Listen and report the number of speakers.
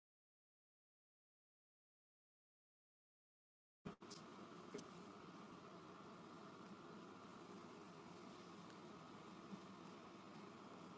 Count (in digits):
0